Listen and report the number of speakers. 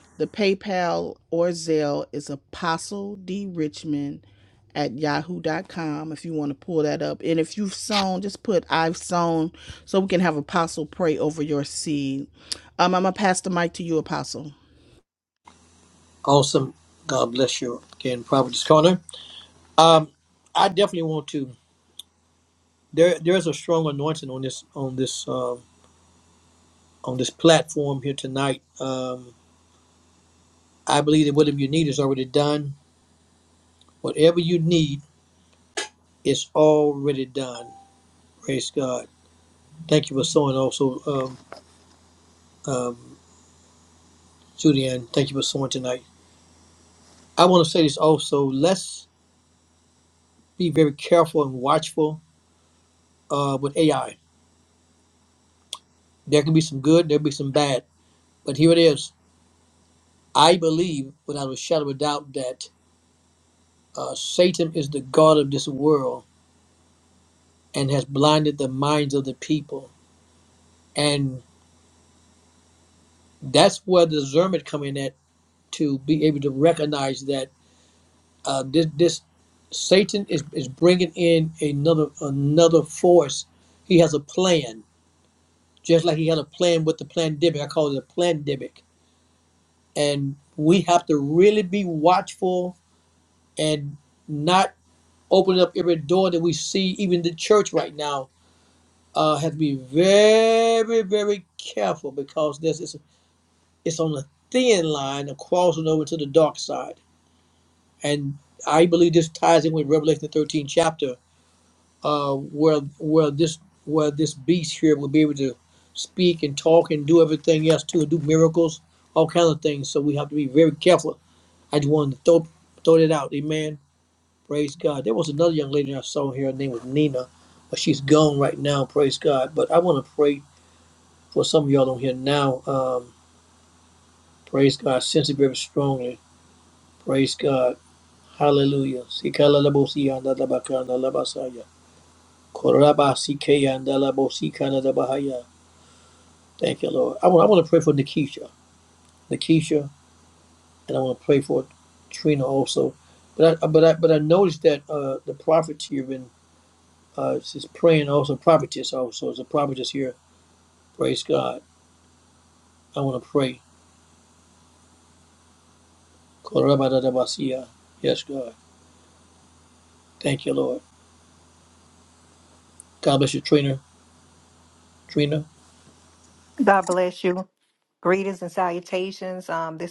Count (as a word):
three